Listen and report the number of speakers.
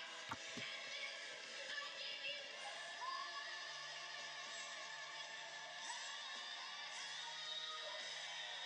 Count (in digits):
0